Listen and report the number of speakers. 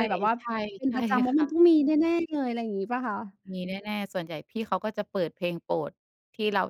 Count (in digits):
2